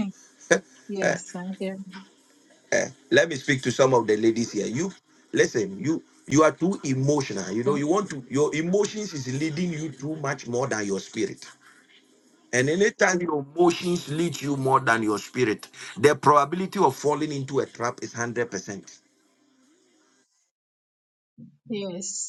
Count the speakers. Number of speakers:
2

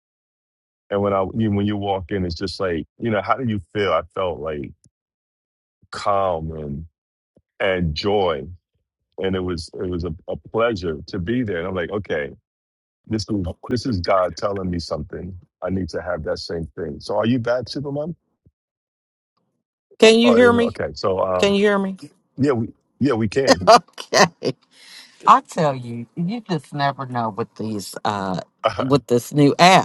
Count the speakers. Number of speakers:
2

